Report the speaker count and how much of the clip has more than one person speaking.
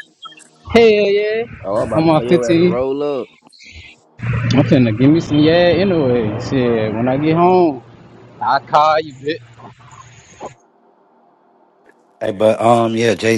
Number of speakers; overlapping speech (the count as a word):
three, about 6%